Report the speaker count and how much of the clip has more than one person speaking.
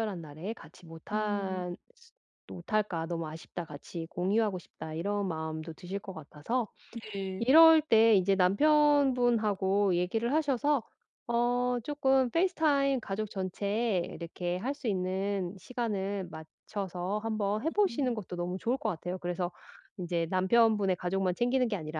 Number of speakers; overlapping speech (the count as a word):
two, about 4%